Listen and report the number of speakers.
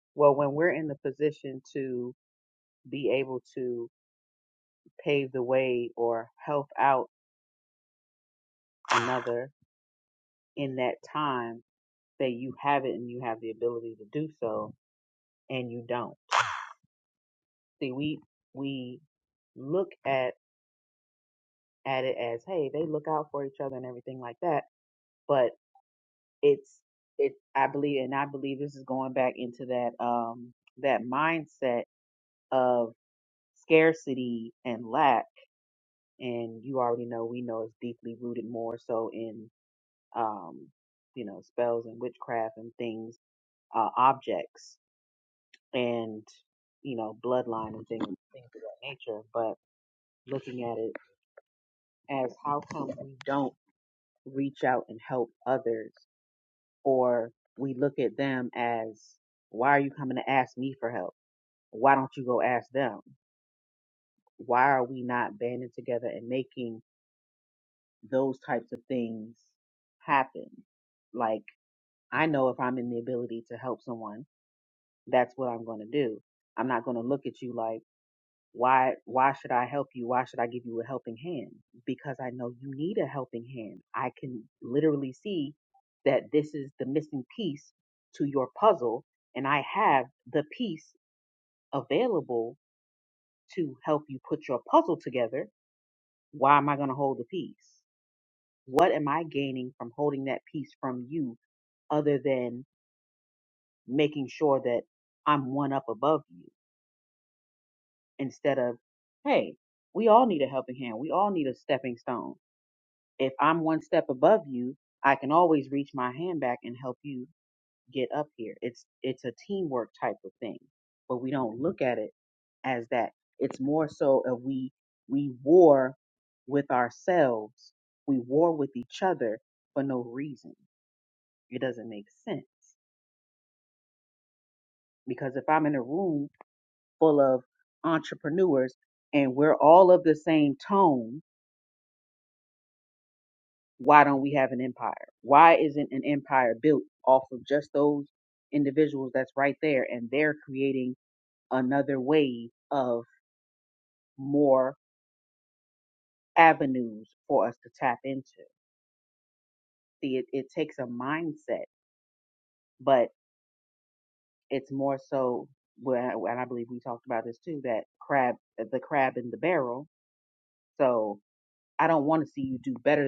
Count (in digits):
1